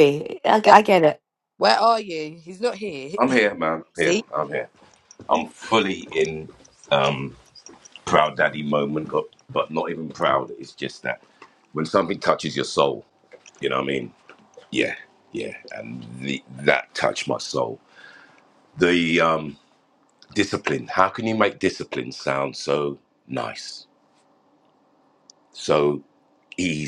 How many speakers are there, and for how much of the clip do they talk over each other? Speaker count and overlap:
3, about 1%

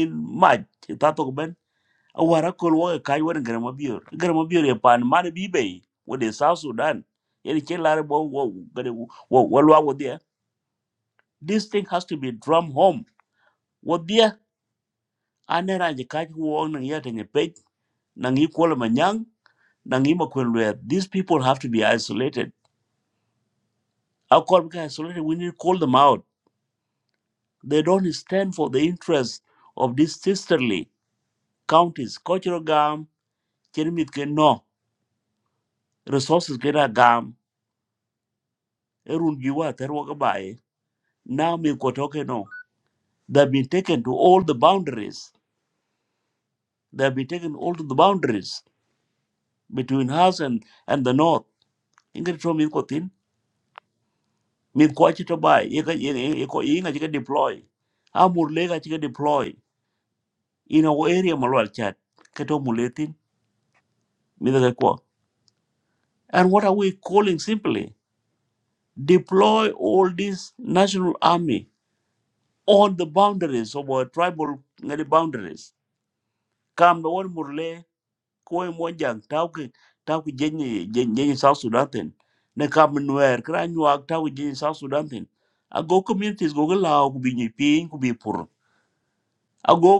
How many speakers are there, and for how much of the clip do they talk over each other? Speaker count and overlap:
1, no overlap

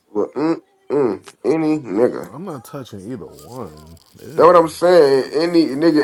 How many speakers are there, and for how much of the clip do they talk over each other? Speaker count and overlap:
2, about 5%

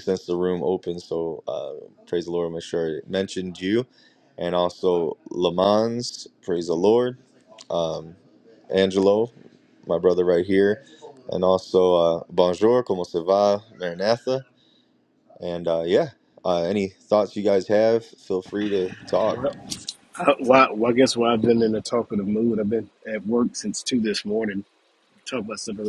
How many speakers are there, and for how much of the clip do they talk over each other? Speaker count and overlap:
2, under 1%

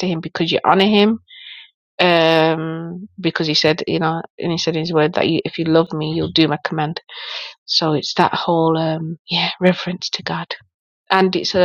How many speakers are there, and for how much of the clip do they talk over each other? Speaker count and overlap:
1, no overlap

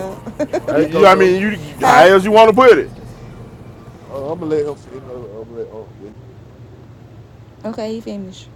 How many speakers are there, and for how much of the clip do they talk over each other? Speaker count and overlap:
3, about 11%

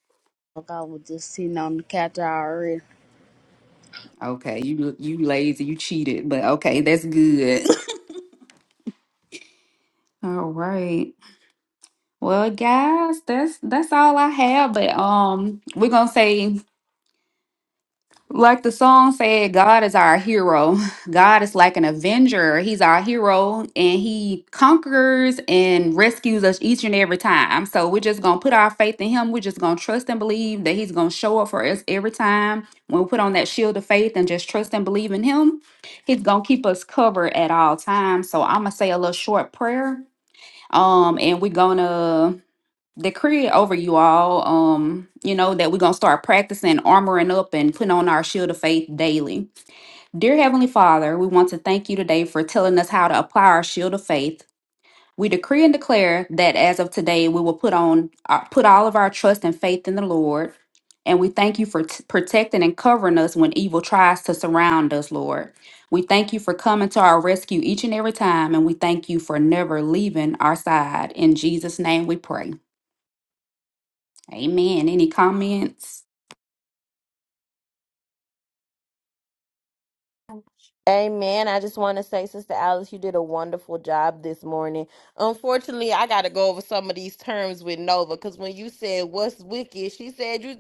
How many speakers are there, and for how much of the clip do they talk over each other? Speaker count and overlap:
3, no overlap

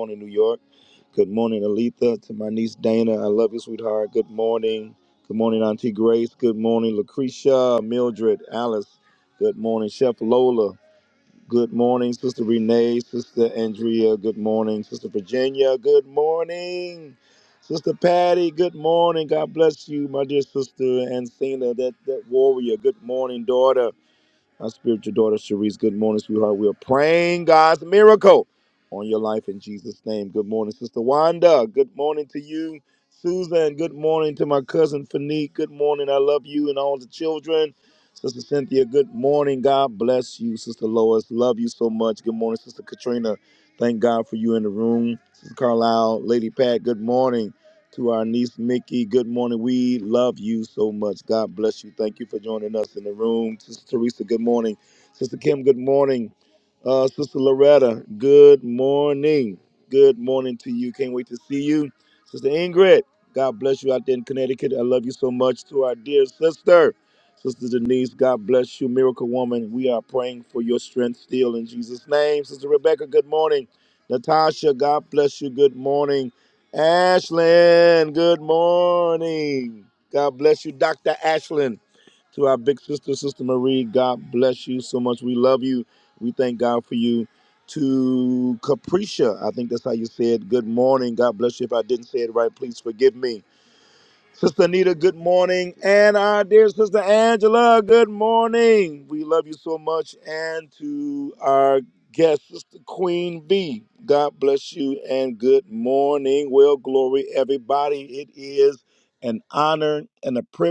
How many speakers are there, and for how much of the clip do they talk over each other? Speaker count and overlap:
1, no overlap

